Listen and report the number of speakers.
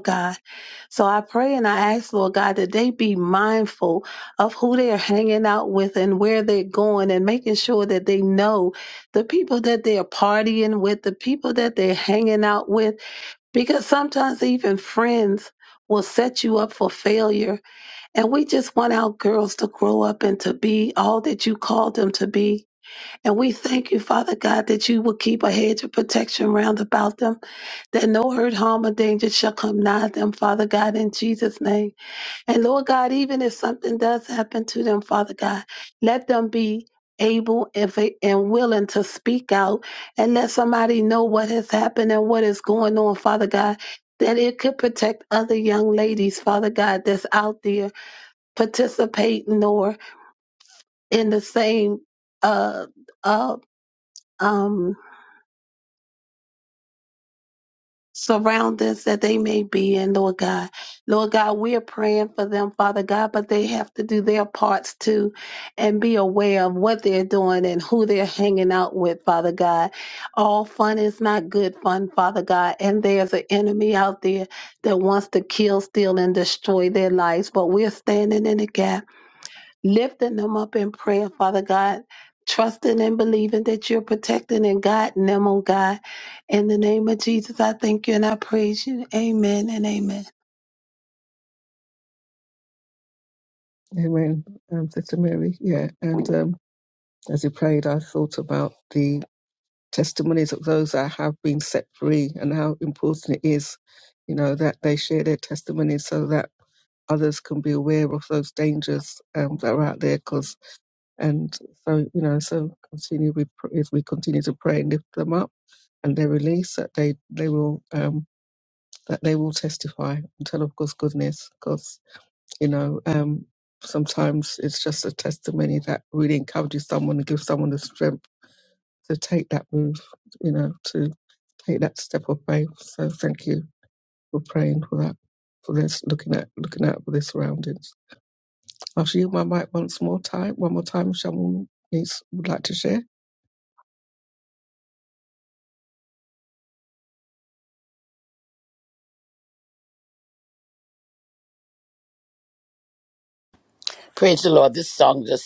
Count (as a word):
three